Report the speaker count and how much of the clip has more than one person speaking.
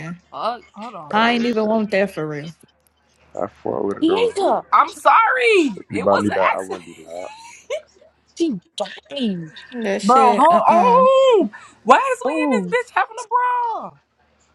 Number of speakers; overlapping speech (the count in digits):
4, about 27%